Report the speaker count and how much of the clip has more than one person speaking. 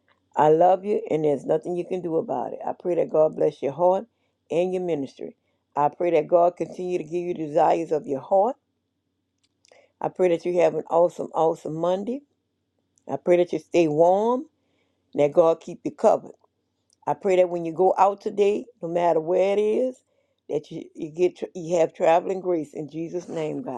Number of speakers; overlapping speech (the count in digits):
1, no overlap